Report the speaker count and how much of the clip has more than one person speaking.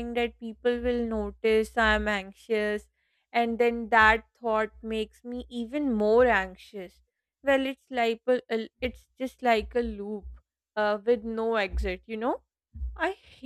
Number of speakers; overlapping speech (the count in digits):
1, no overlap